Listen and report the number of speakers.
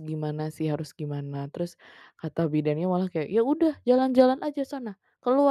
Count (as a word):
one